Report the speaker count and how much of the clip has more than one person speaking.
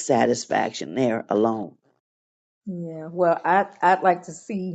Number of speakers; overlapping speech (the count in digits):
2, no overlap